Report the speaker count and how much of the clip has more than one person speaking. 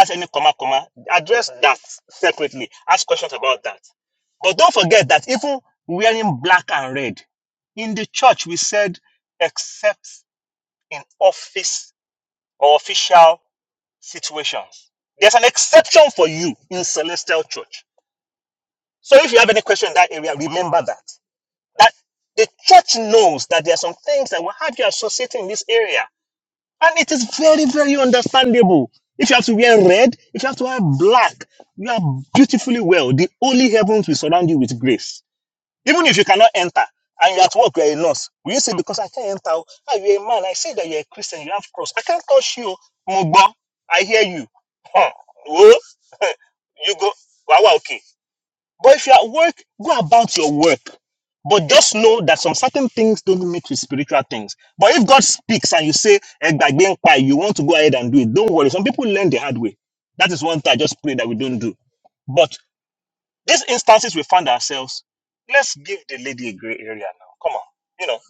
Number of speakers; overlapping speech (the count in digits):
1, no overlap